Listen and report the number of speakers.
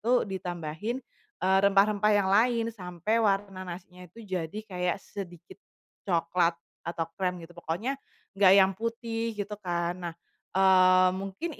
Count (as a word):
one